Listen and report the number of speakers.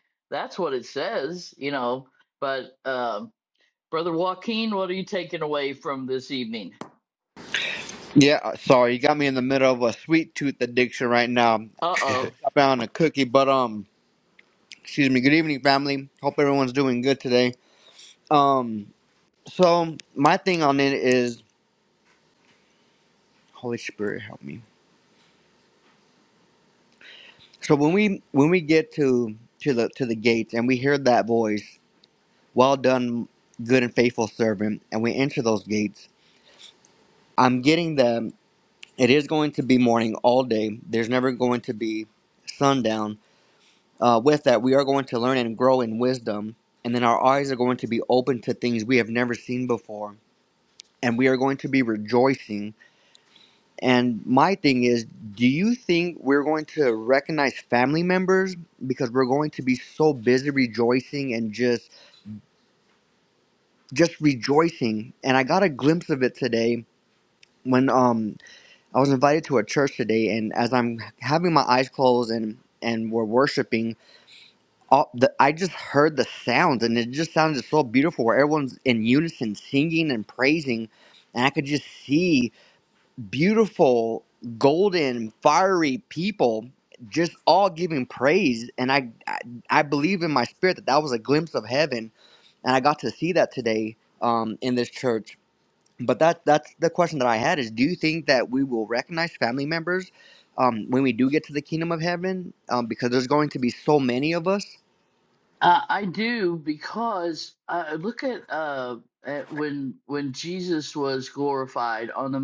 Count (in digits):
2